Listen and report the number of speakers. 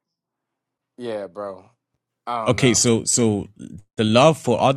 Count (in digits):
2